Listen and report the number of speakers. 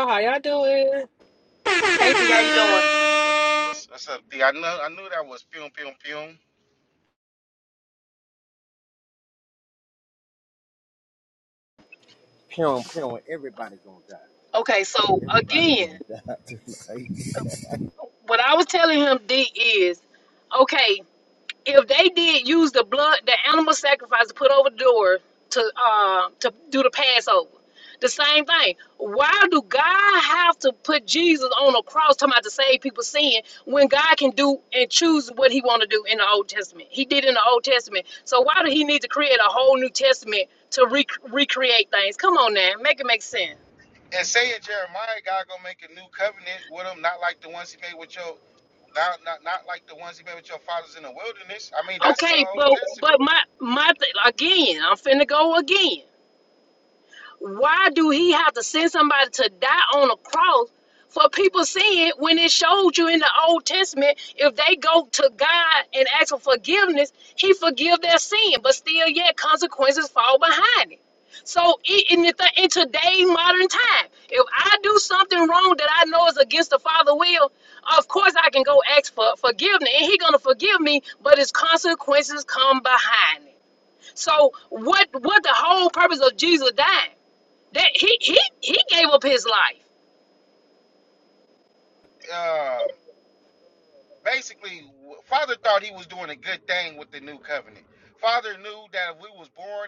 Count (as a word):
four